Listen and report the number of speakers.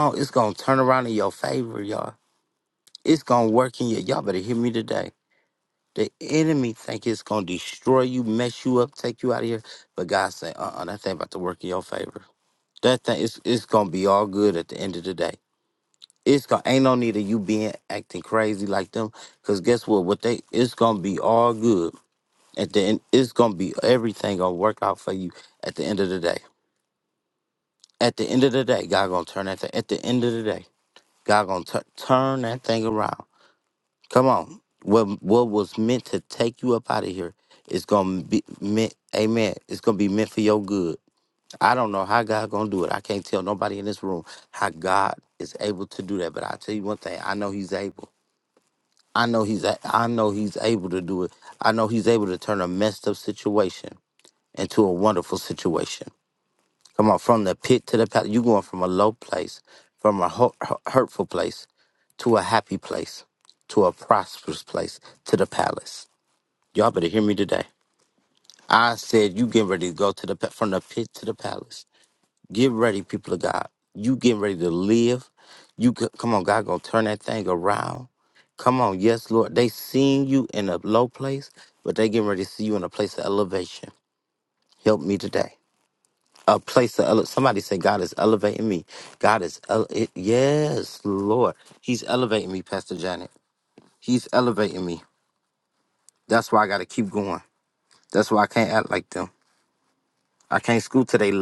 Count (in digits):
1